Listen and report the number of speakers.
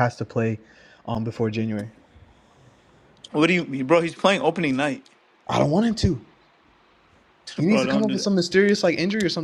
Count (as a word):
two